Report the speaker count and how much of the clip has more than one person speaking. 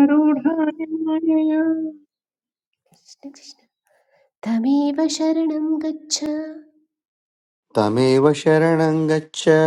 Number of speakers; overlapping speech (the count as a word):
three, no overlap